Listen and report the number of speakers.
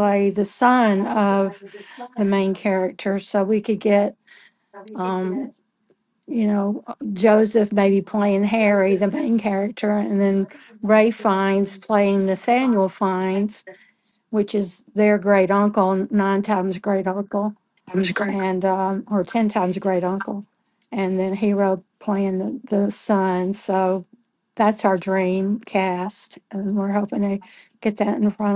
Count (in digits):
1